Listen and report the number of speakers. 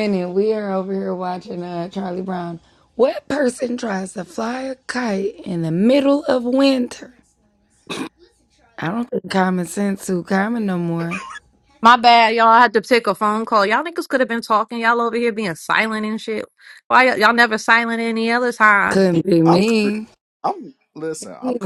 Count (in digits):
3